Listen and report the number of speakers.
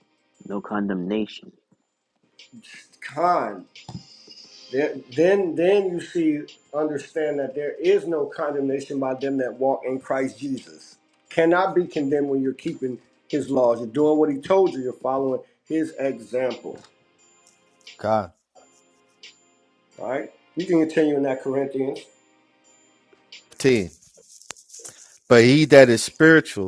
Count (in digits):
3